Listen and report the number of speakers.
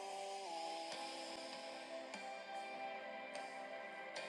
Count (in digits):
0